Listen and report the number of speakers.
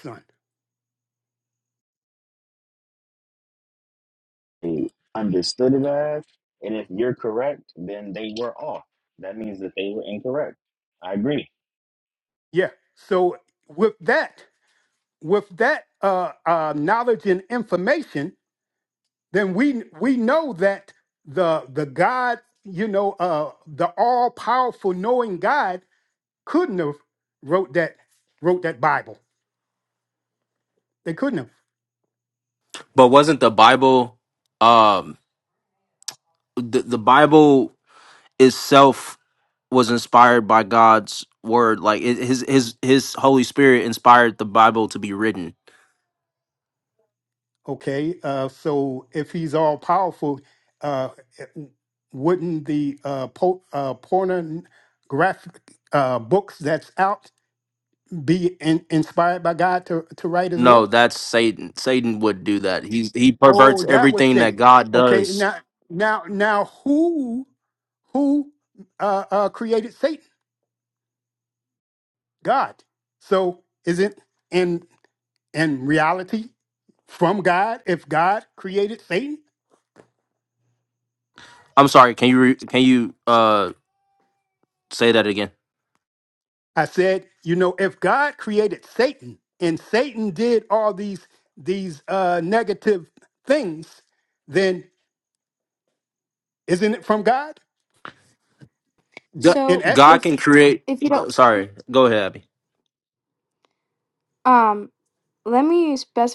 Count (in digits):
4